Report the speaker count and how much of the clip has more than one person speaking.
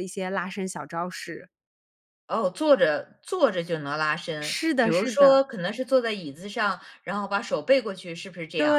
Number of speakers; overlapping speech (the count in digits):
2, about 14%